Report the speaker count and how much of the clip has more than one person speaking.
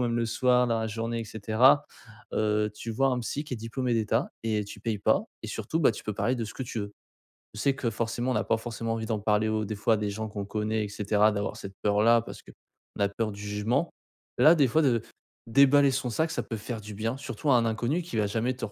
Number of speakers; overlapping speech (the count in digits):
1, no overlap